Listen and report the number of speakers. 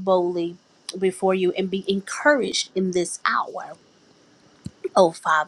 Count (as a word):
one